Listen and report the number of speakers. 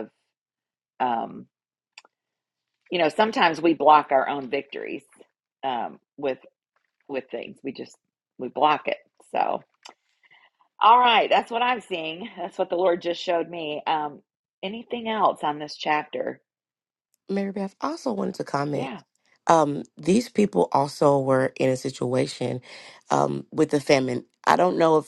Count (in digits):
2